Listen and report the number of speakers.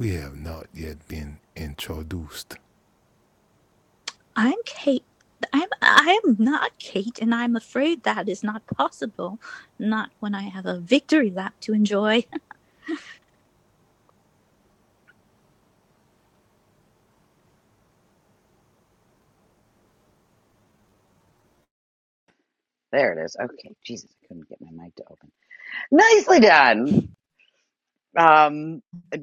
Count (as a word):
three